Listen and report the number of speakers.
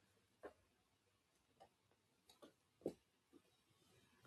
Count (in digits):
0